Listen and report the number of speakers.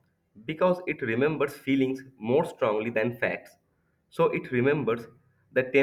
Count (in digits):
1